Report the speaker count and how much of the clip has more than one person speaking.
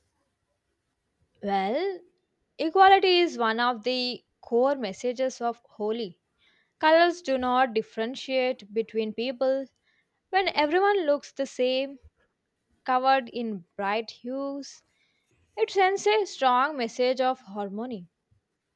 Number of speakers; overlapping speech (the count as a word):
one, no overlap